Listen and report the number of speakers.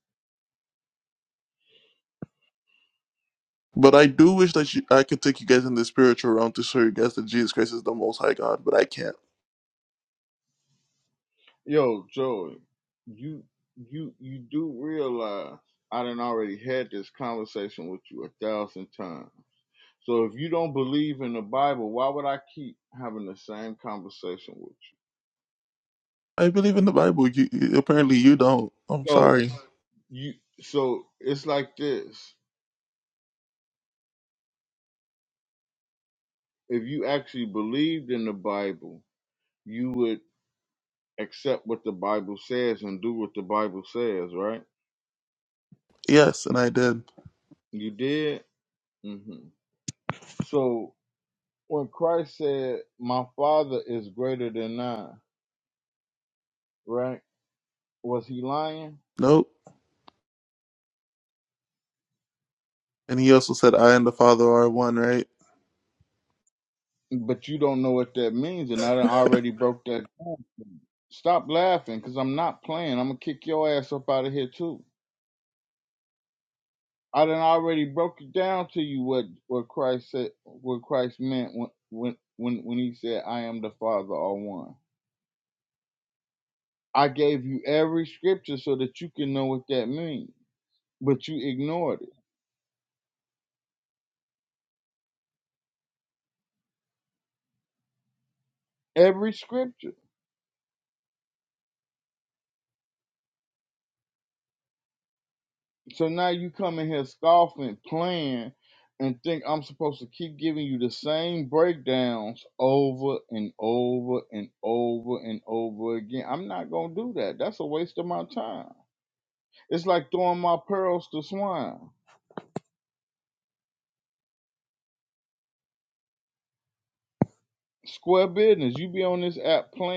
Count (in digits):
2